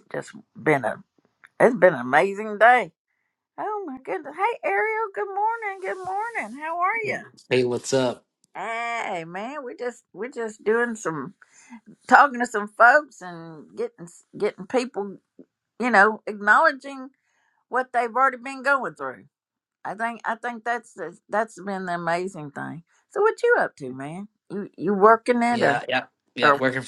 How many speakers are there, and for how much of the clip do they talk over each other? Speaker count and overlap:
2, about 2%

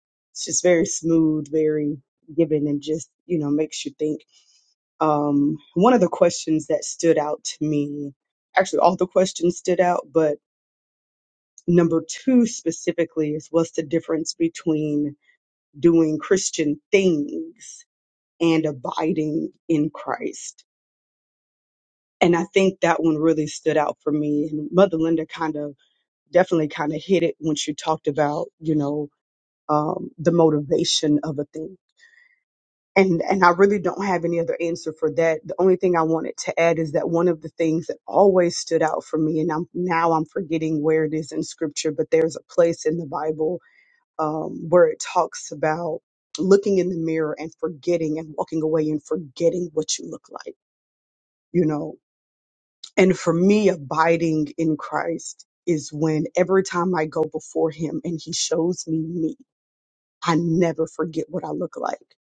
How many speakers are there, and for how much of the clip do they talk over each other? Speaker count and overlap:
1, no overlap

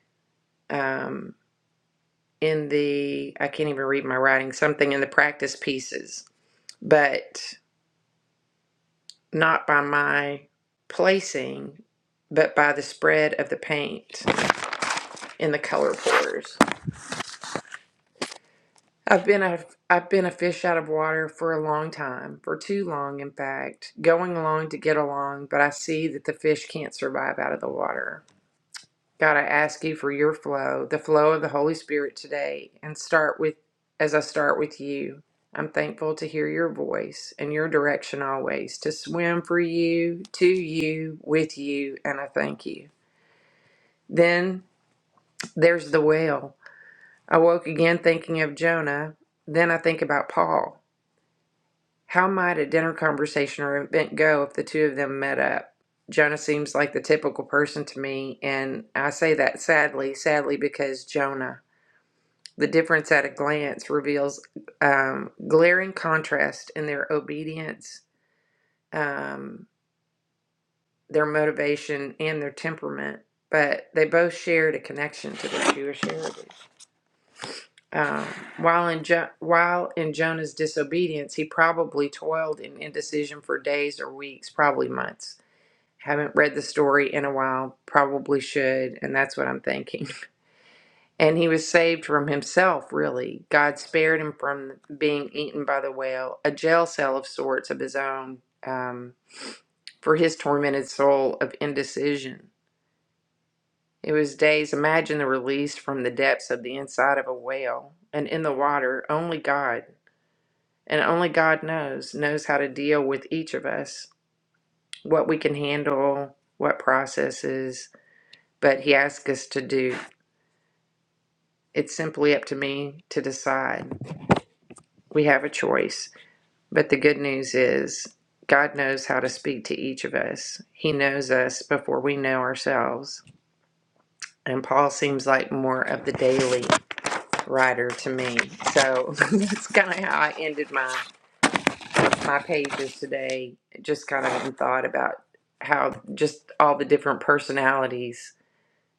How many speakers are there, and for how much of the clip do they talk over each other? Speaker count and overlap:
1, no overlap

